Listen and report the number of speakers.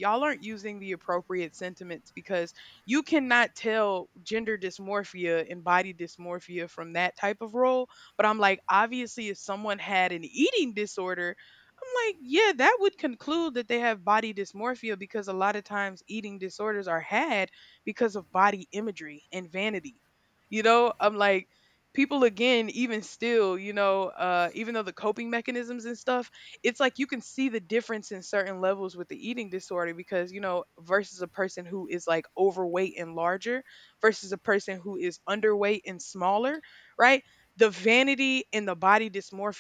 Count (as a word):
one